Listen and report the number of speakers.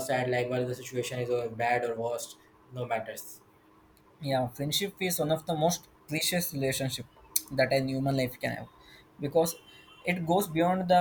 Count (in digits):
2